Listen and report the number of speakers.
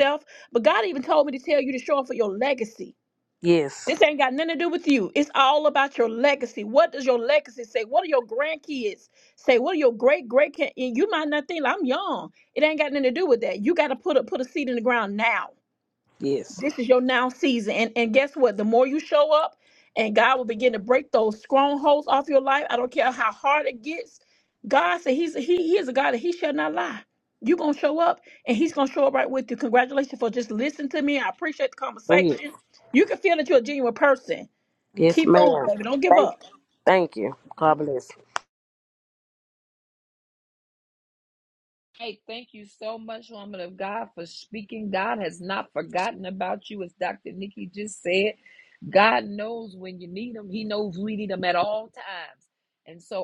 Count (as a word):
three